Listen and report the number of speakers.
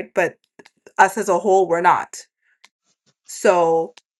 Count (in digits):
1